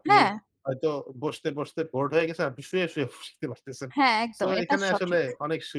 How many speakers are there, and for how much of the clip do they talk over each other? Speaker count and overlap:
two, about 16%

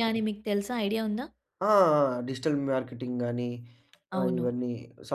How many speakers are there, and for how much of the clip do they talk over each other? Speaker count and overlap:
two, about 7%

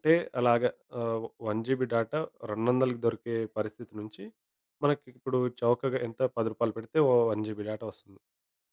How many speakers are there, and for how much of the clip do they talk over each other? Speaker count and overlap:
one, no overlap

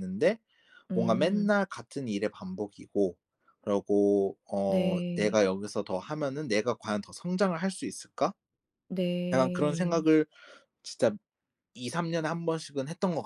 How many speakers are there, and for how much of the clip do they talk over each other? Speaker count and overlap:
two, about 13%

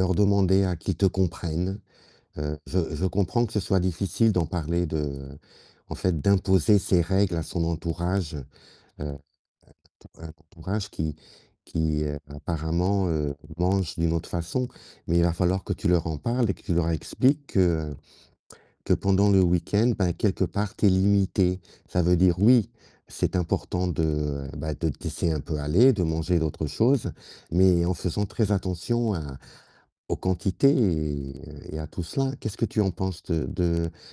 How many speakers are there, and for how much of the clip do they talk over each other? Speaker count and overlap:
one, no overlap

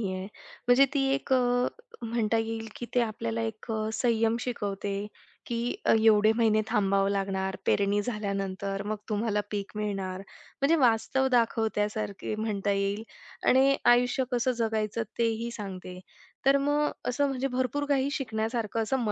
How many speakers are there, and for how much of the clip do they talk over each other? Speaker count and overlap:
one, no overlap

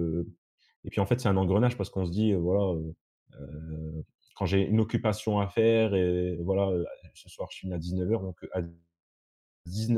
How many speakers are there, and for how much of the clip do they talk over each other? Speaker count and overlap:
one, no overlap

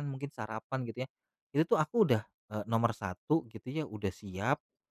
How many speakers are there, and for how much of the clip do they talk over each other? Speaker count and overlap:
one, no overlap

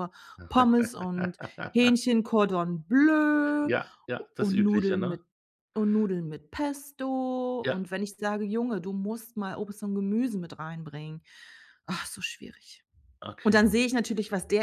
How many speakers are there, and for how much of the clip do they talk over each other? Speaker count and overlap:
two, about 10%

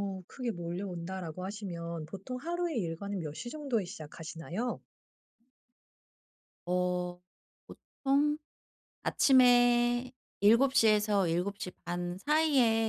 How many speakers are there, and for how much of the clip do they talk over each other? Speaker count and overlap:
two, no overlap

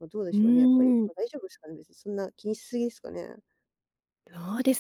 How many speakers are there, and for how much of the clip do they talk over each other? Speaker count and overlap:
two, about 16%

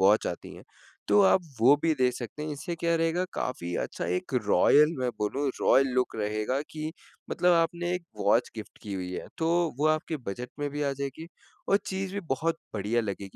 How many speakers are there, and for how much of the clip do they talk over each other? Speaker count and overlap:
one, no overlap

